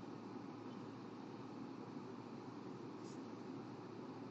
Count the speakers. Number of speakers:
0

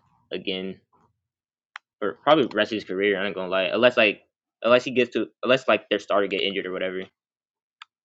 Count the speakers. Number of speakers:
1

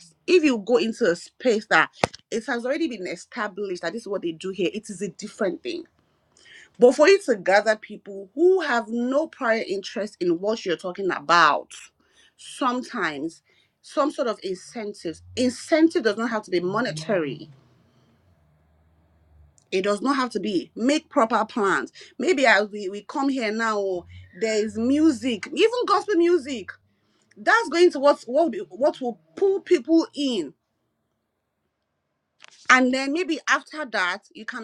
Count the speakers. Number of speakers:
1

